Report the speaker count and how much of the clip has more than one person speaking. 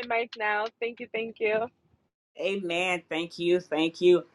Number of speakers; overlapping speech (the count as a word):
two, no overlap